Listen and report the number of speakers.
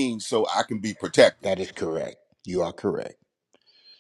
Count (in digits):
2